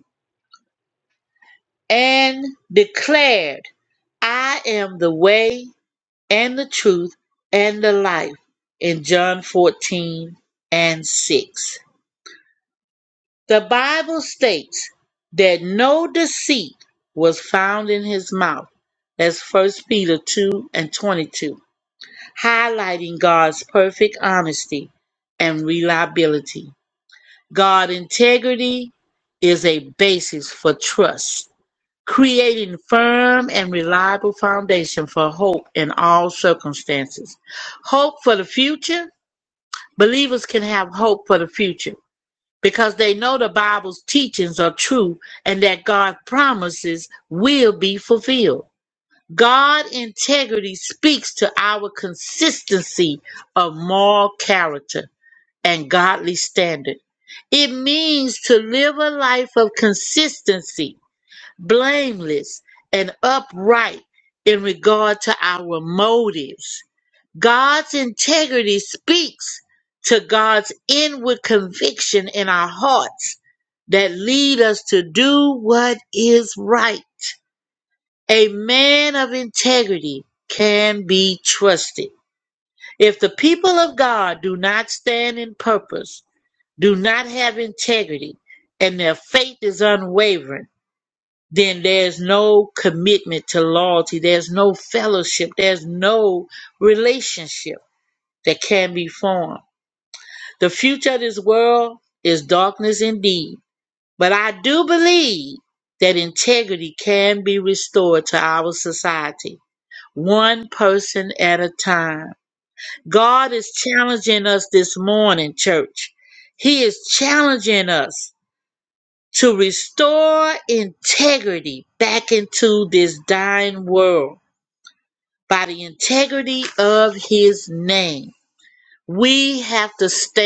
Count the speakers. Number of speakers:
one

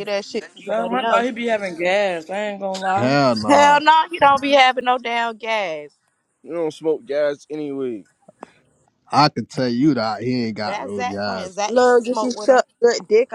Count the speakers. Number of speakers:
five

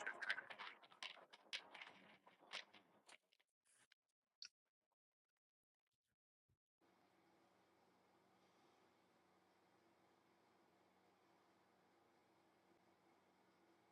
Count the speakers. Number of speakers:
zero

